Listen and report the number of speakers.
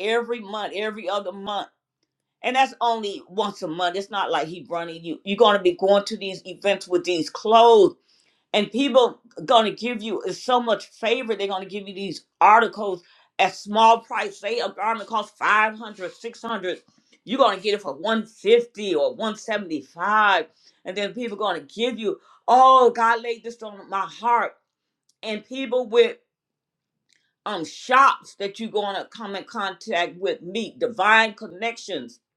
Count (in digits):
1